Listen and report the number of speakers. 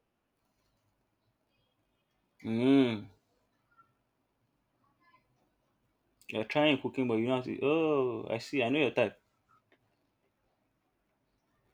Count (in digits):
1